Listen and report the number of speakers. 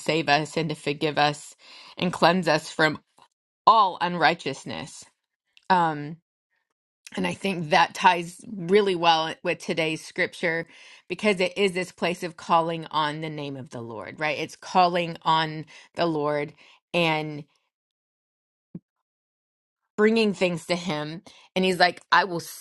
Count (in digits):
1